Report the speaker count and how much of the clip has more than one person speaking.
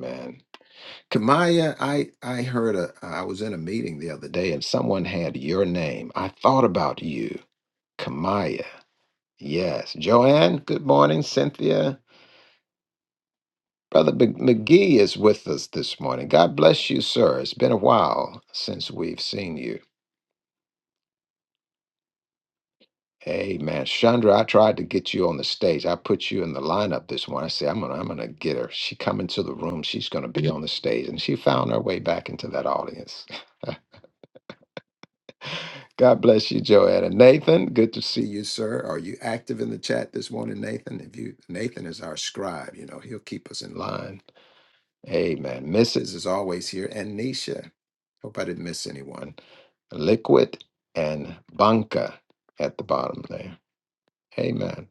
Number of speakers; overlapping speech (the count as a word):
one, no overlap